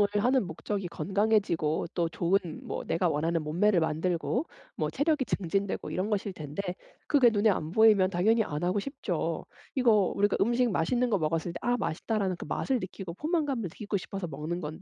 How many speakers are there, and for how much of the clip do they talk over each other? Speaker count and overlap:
1, no overlap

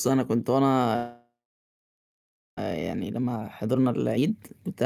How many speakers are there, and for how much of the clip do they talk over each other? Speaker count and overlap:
1, no overlap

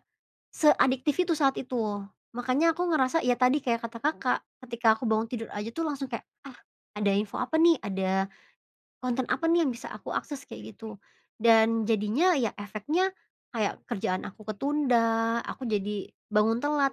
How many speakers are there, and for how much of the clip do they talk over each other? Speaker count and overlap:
1, no overlap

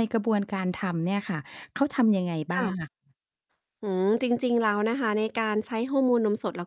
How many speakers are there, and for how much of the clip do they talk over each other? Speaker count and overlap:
2, about 4%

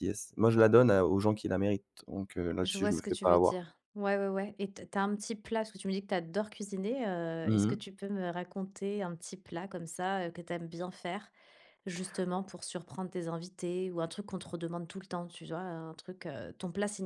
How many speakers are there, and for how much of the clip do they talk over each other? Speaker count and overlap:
2, about 7%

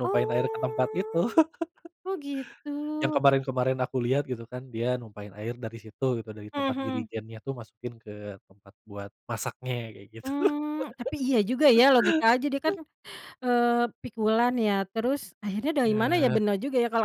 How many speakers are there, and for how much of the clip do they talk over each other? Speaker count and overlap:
2, about 14%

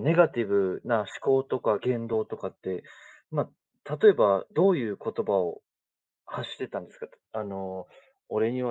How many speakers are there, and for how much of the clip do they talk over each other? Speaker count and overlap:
1, no overlap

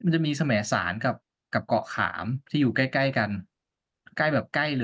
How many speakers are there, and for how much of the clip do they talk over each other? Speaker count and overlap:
1, no overlap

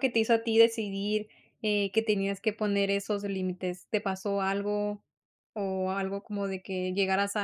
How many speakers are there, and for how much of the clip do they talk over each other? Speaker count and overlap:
1, no overlap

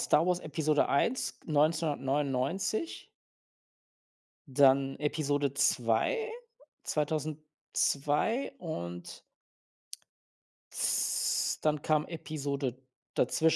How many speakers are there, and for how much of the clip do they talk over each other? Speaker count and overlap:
1, no overlap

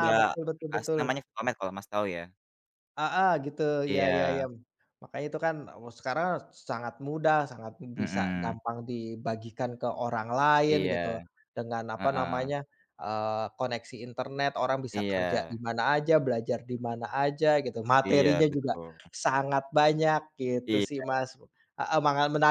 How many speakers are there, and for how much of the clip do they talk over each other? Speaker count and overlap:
2, about 20%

